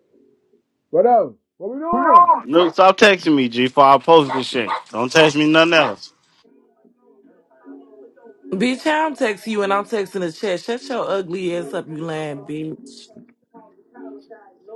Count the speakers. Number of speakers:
3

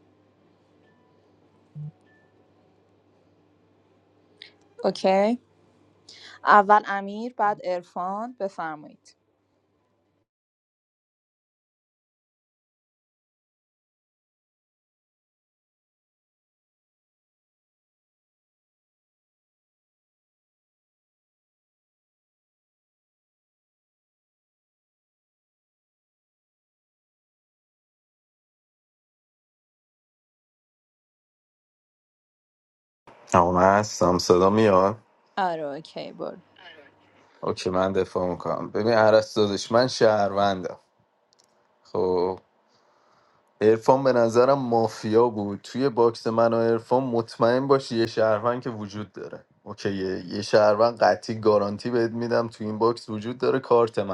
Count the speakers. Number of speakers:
2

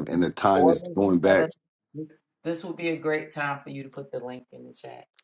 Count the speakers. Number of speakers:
2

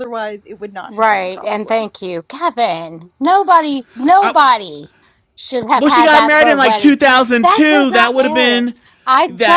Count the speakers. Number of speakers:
3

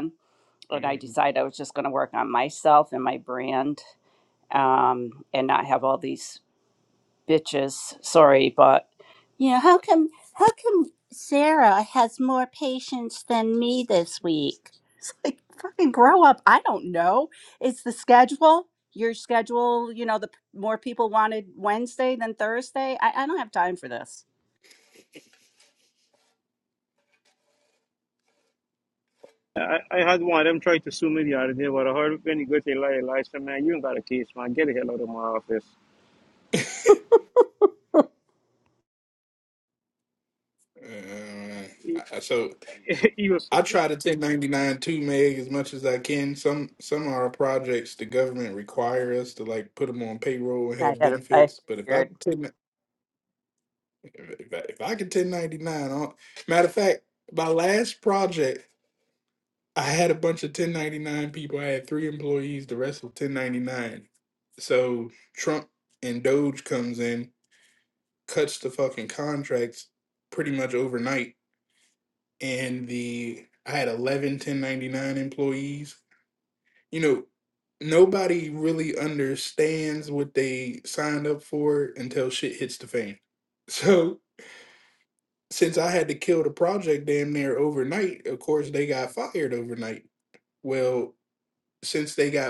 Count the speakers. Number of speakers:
3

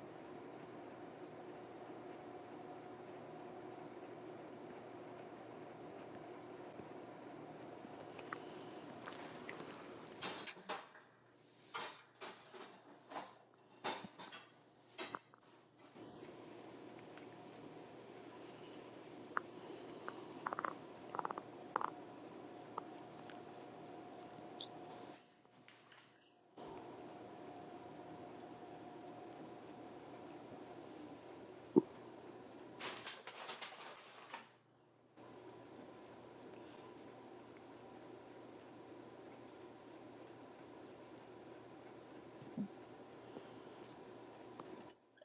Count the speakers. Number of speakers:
0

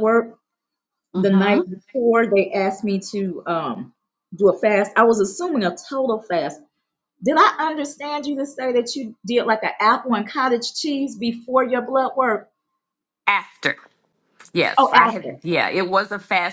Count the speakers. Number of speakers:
2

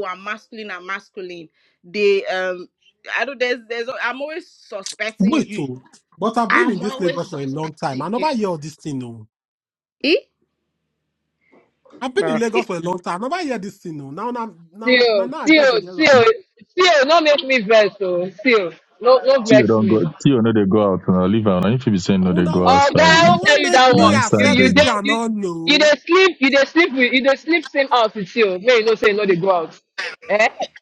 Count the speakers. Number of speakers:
4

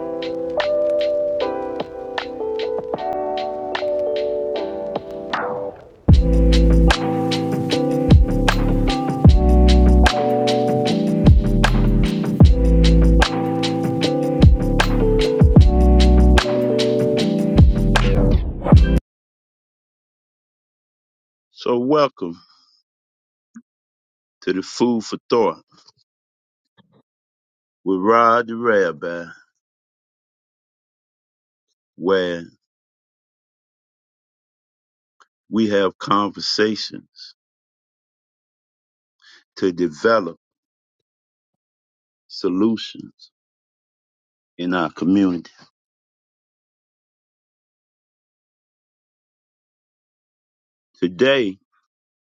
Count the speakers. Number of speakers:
1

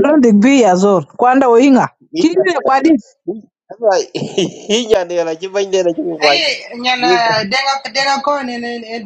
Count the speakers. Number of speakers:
3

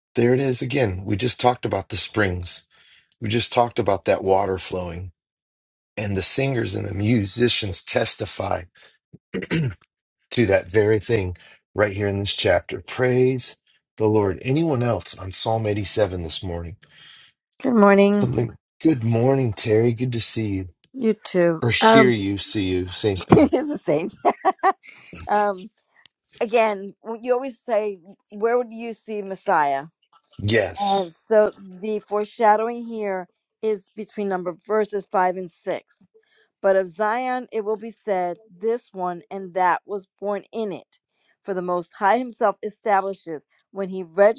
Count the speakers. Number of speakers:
2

